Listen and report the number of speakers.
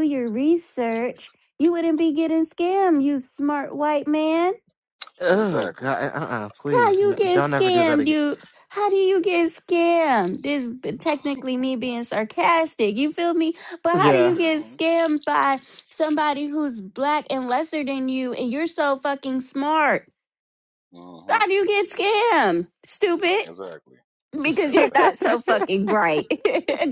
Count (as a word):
three